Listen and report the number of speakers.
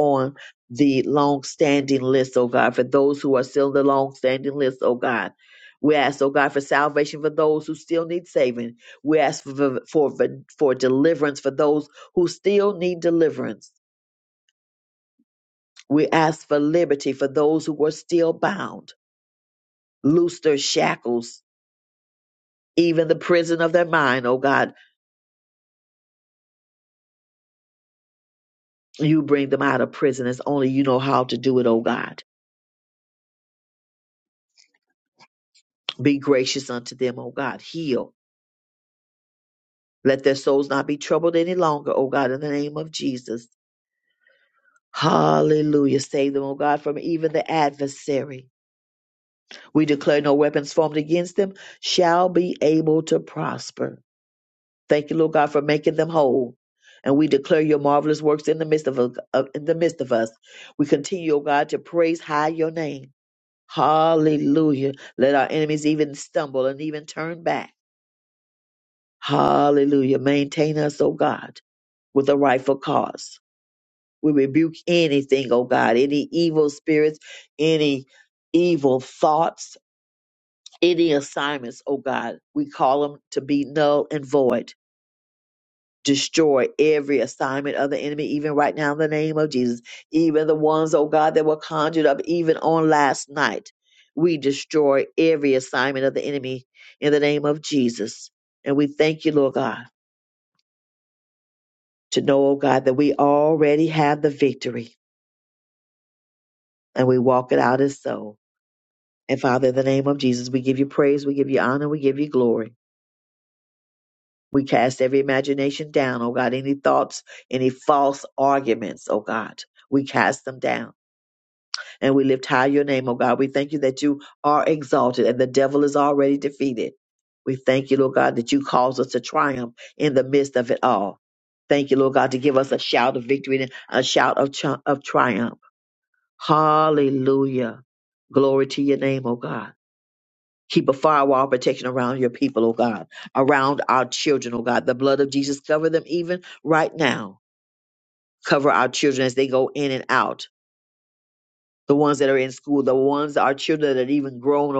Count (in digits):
1